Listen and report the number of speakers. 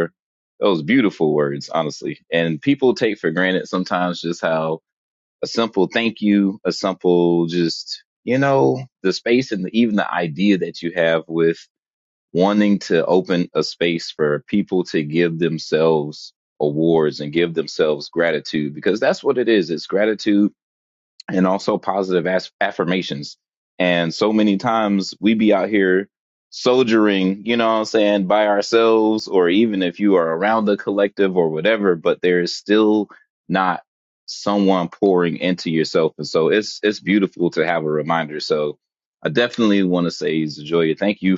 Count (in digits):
1